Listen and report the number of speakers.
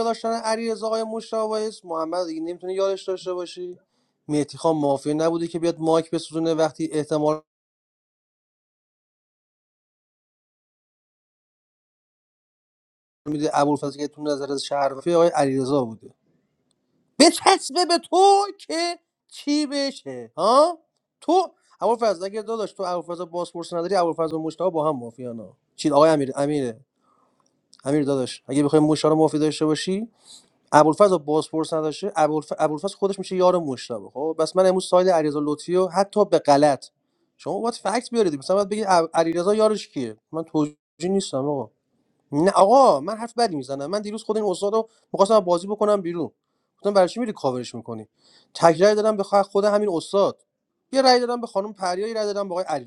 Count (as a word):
one